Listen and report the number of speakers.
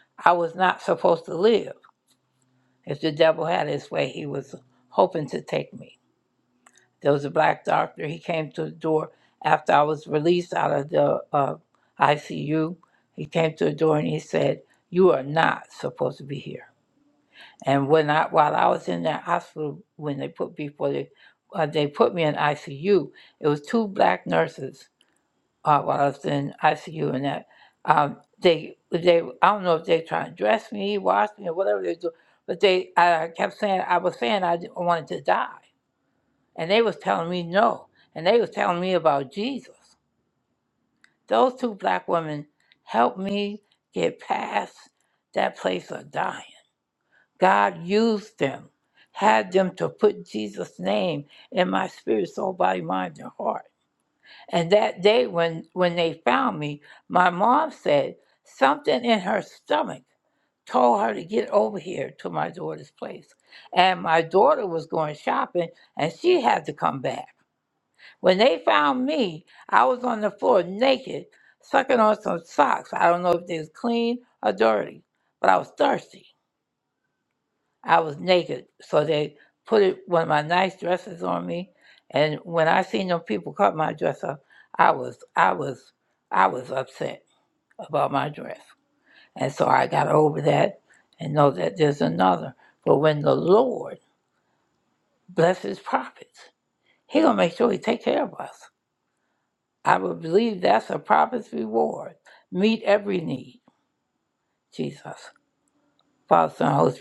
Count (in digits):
1